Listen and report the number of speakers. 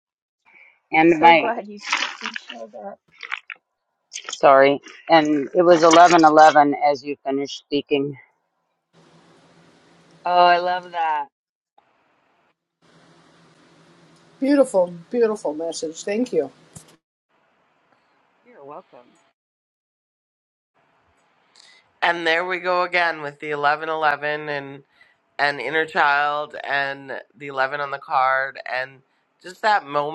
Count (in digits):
5